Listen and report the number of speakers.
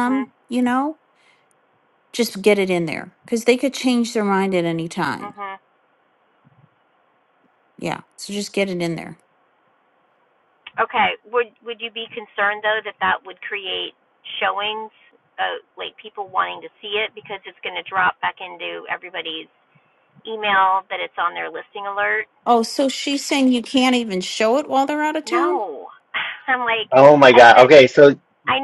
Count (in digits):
3